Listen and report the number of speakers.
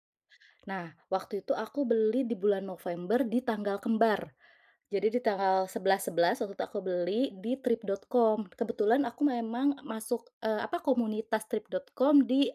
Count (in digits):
1